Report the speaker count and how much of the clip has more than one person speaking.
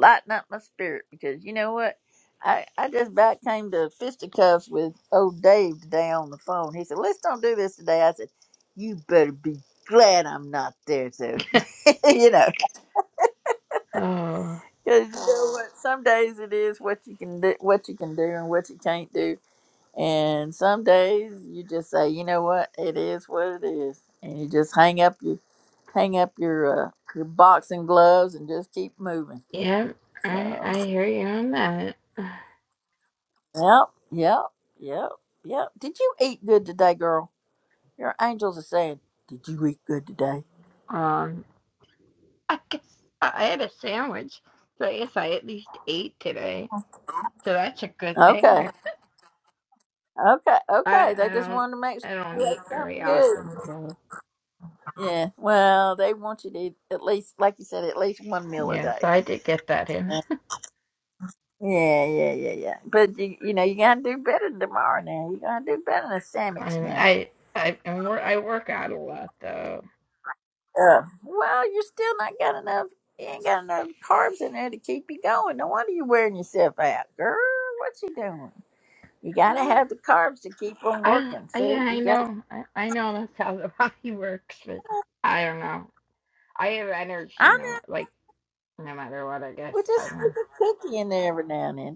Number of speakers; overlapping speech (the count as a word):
two, about 7%